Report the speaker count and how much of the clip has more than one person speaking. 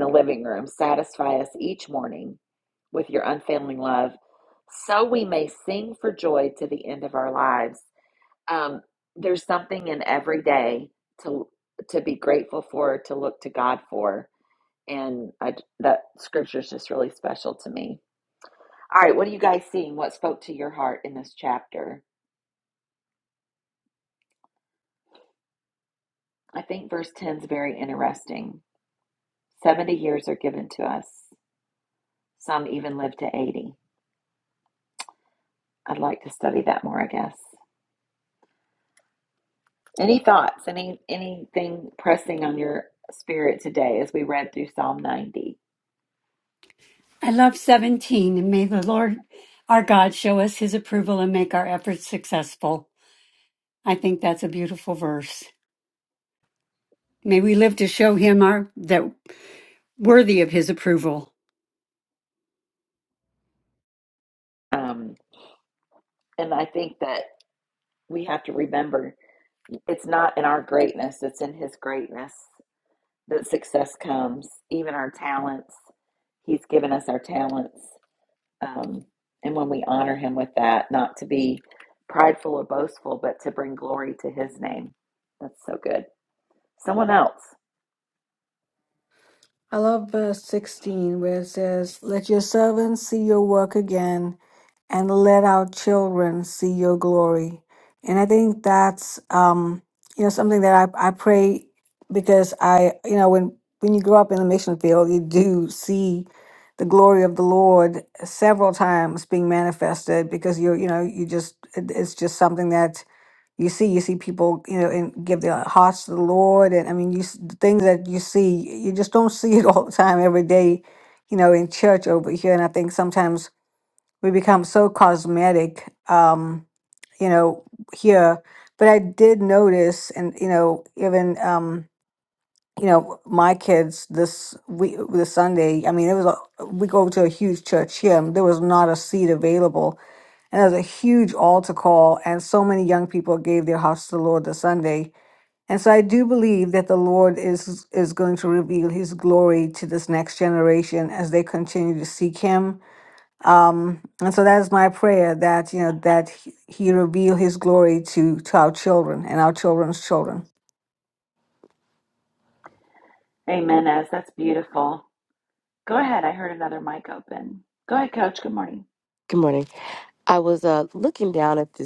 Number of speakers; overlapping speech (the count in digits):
4, no overlap